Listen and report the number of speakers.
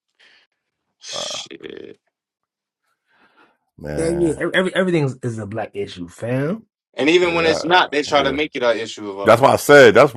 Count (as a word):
three